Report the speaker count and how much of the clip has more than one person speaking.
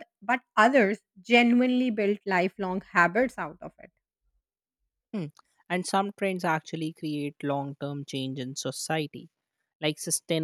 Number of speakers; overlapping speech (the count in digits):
2, no overlap